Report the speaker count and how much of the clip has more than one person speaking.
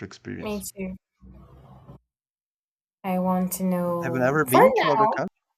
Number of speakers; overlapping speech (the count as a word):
two, about 22%